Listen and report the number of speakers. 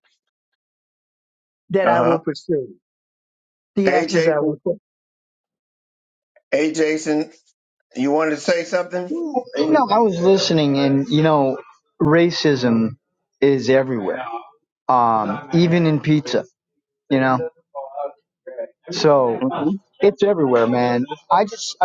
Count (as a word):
three